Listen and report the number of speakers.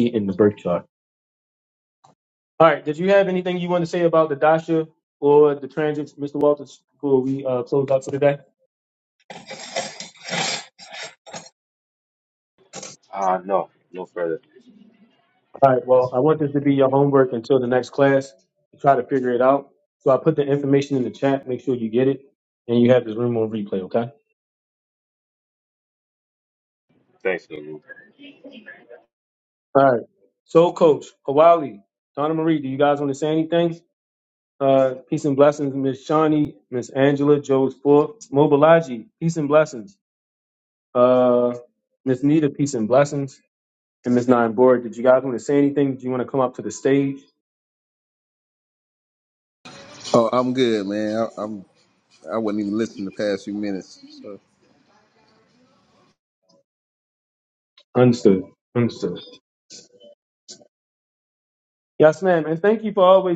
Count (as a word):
three